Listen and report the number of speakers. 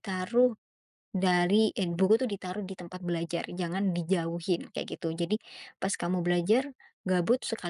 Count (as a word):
one